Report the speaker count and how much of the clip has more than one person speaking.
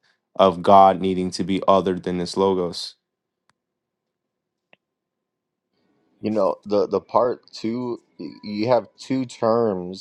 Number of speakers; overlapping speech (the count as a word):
two, no overlap